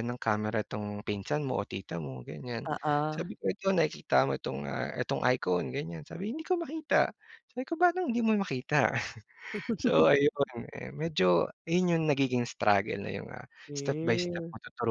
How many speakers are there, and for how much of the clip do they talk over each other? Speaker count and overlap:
2, about 6%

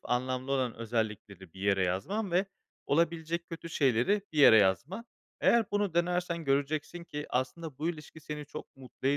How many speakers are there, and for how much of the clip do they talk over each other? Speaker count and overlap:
1, no overlap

